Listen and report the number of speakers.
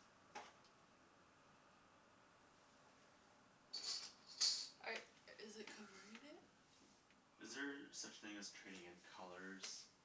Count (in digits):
2